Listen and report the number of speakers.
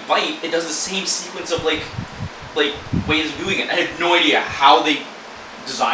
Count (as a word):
one